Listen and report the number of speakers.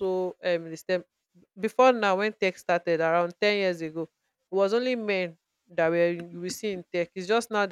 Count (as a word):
one